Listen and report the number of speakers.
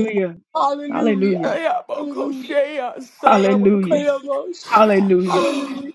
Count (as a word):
three